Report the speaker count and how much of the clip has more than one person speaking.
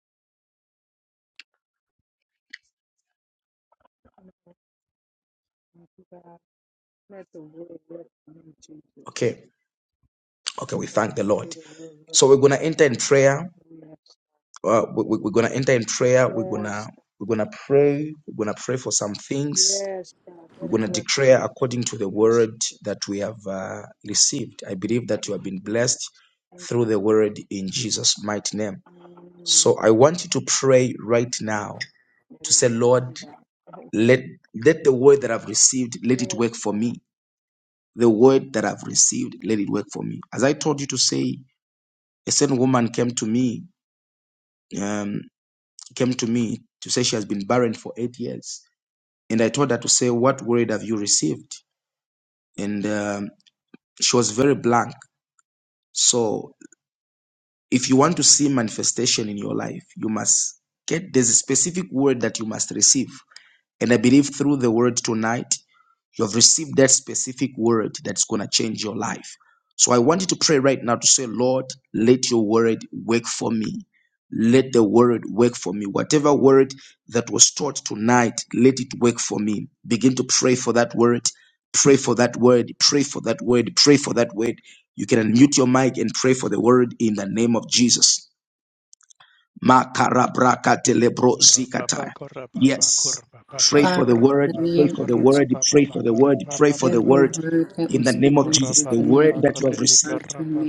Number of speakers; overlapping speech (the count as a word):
four, about 13%